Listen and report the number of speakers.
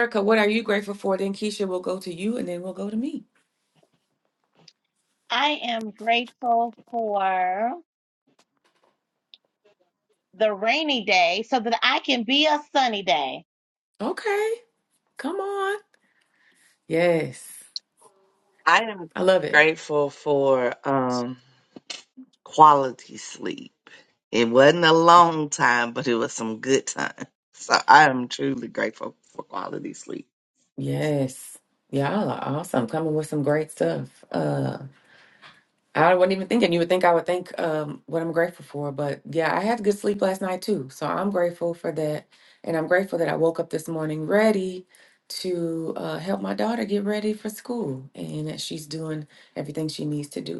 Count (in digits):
3